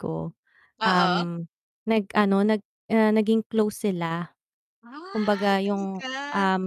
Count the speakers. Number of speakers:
two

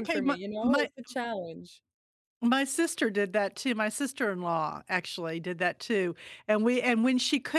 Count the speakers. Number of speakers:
two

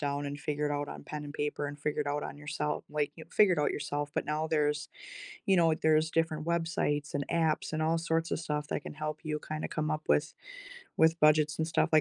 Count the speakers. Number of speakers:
one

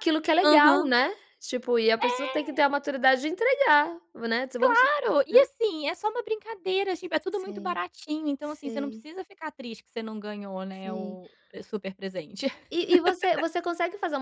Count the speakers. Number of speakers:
two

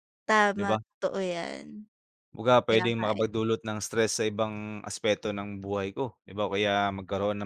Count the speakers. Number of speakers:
two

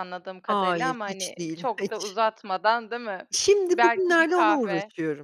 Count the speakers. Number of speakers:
two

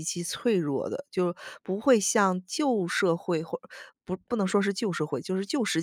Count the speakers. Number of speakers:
one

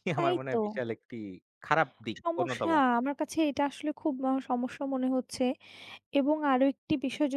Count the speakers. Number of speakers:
two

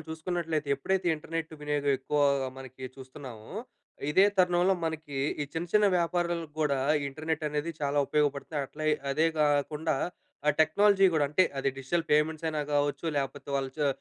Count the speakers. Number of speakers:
one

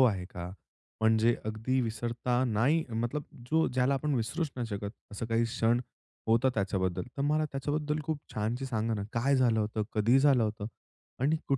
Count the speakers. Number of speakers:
one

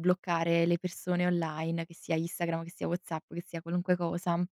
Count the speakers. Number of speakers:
one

